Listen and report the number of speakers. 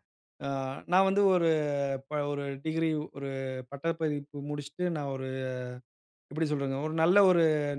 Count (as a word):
one